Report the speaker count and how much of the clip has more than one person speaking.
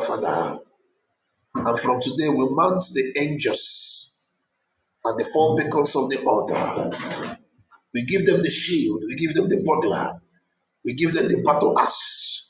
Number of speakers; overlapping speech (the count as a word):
one, no overlap